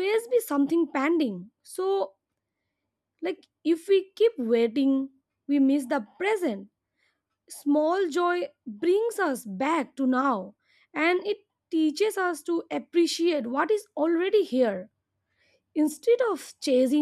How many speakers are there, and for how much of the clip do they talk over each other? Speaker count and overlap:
1, no overlap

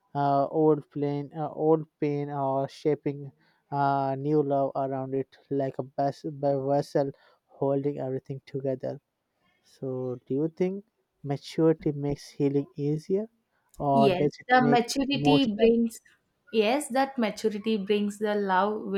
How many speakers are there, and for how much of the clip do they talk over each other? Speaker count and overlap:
2, about 9%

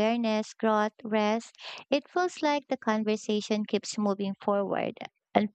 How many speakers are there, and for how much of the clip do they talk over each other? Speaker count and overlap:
1, no overlap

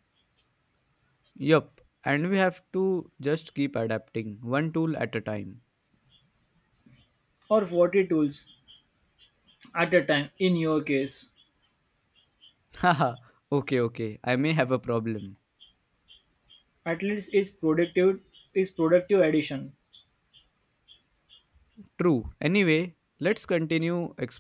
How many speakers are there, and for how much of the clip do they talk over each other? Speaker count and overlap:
2, no overlap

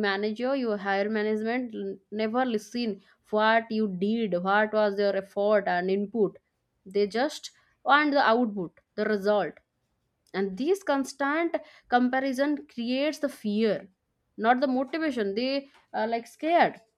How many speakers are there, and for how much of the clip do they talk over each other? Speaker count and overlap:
1, no overlap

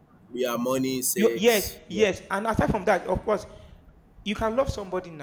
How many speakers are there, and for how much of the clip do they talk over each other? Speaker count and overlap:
2, about 10%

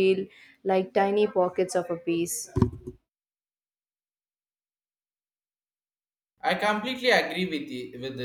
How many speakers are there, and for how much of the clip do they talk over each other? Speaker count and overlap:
2, no overlap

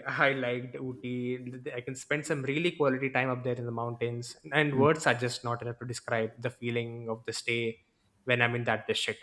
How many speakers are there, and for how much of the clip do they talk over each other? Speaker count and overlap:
1, no overlap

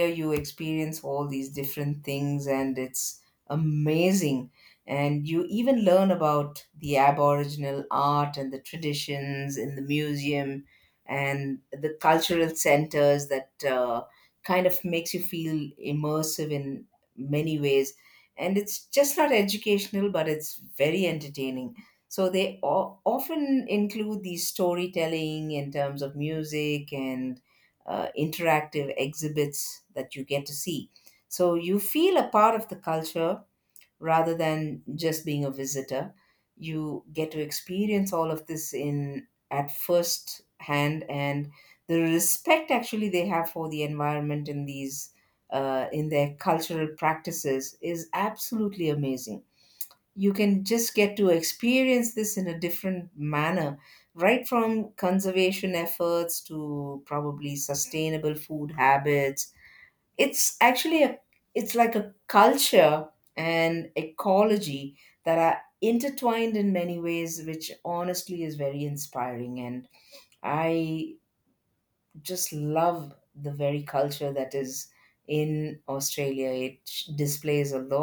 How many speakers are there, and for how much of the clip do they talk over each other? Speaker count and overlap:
1, no overlap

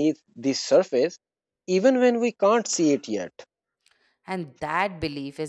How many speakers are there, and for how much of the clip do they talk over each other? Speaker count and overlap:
2, no overlap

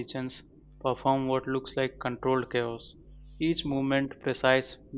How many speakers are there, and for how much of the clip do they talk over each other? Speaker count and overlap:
1, no overlap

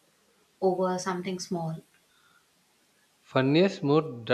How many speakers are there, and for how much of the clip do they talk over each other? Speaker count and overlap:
2, no overlap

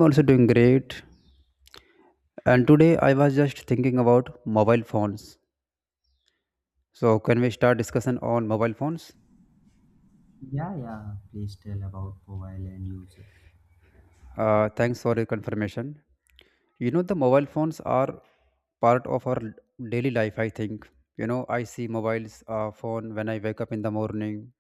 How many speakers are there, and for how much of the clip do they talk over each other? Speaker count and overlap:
2, no overlap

